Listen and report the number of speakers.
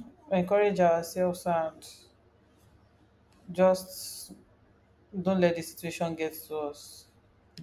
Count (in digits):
1